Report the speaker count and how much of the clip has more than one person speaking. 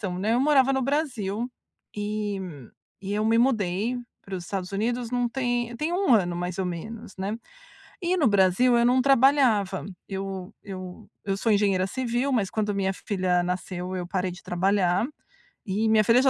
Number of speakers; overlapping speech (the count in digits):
1, no overlap